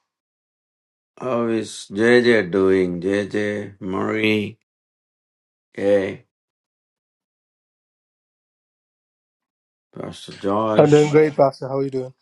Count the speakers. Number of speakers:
2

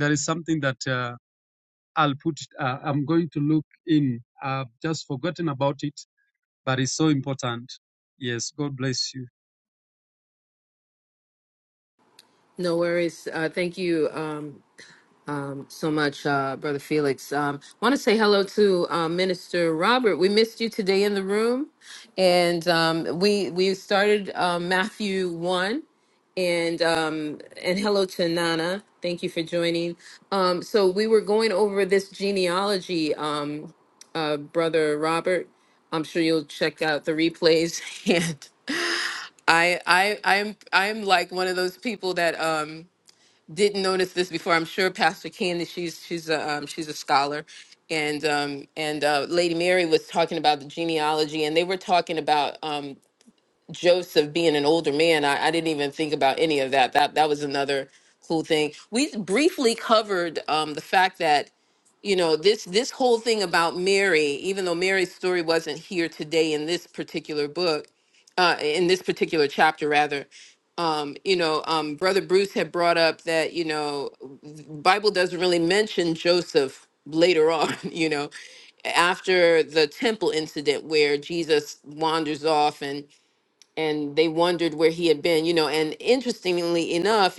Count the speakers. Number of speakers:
2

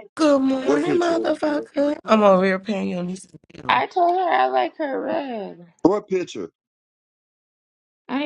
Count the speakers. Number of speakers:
3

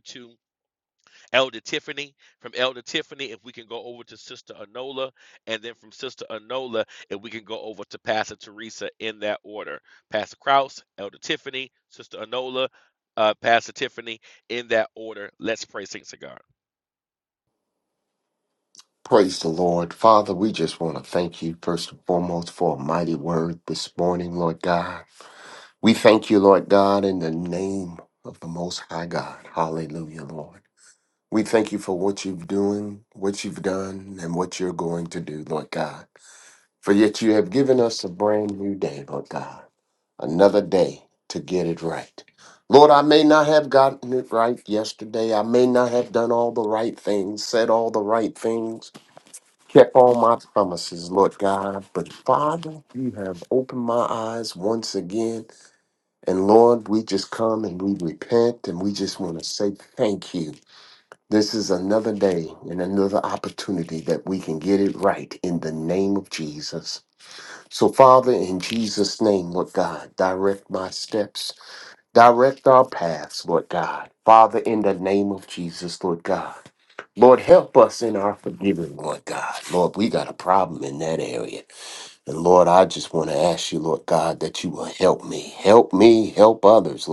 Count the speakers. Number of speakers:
2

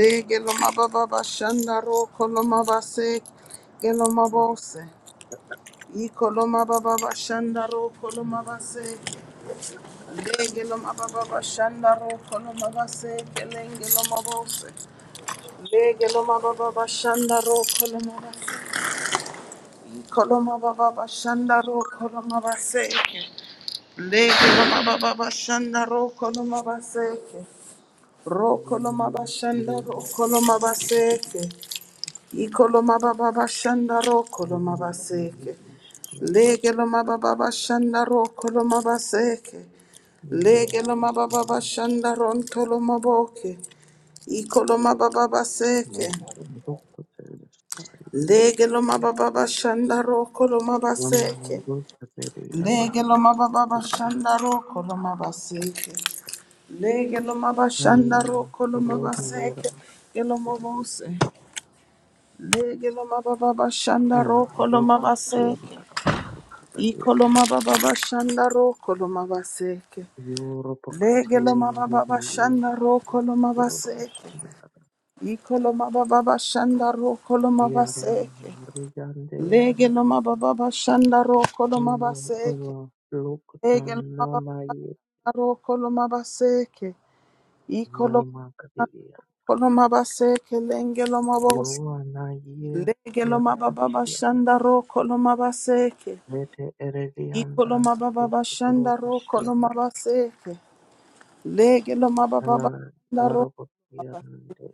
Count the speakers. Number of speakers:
2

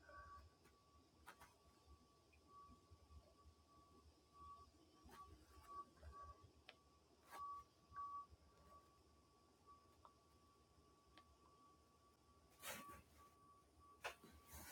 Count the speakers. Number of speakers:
0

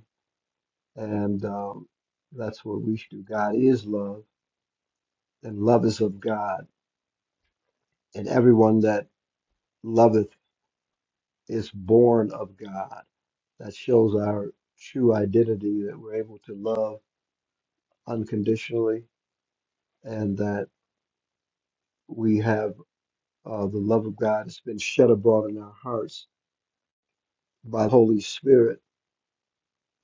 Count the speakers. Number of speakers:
1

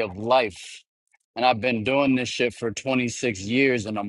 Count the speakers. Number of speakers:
1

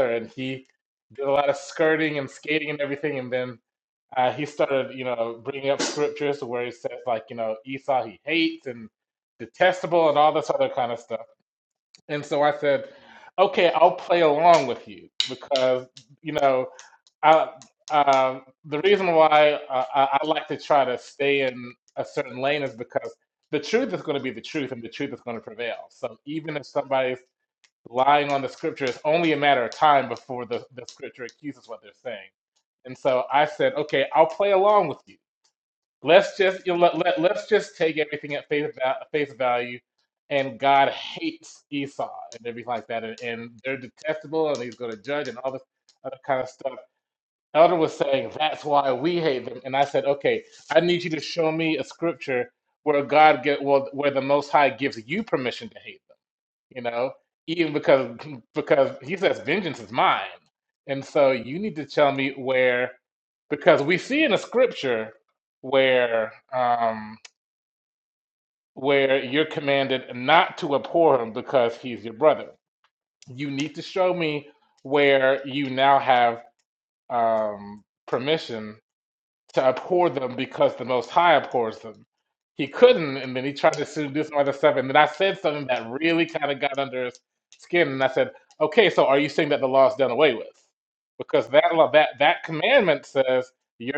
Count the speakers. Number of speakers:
1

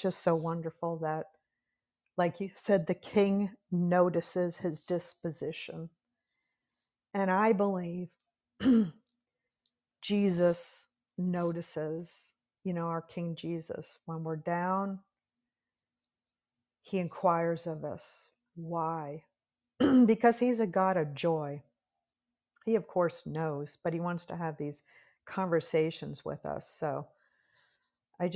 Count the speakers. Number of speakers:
1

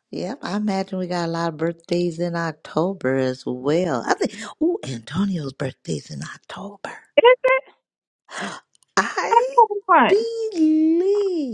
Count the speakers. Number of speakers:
2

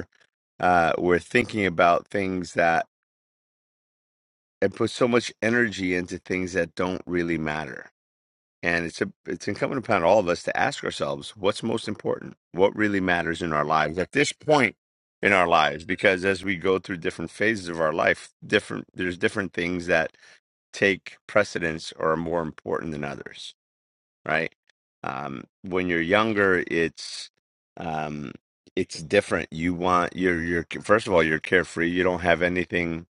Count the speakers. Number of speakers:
1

